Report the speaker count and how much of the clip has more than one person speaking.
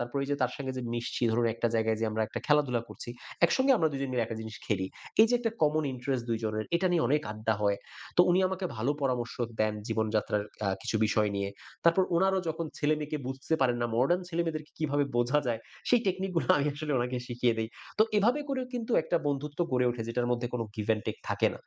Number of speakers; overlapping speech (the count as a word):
one, no overlap